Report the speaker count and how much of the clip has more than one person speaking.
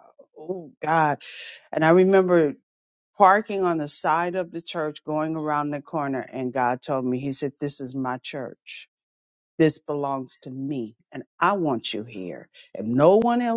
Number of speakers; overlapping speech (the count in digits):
1, no overlap